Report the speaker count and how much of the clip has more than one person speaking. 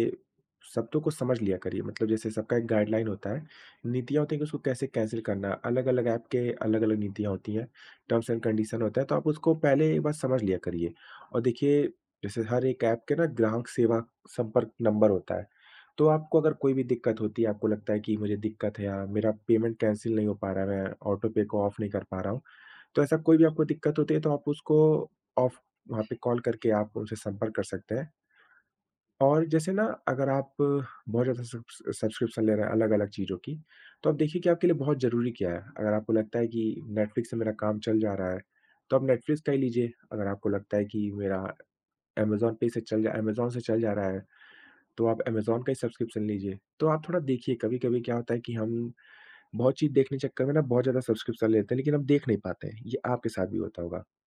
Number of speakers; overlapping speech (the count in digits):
1, no overlap